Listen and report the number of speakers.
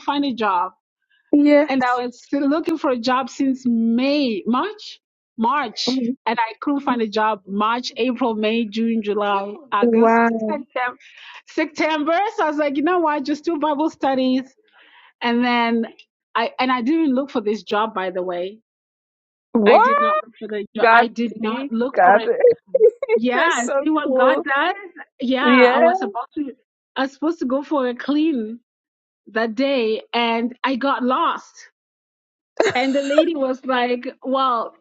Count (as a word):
two